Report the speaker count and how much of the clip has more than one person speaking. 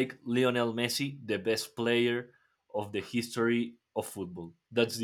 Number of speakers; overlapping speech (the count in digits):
1, no overlap